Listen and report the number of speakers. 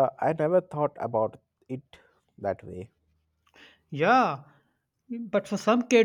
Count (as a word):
two